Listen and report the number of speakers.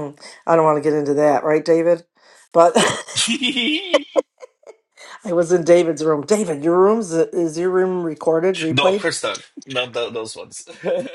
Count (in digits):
2